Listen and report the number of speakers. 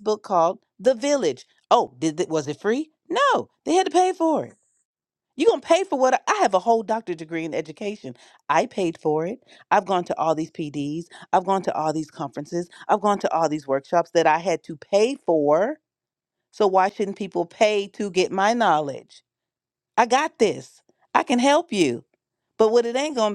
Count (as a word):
one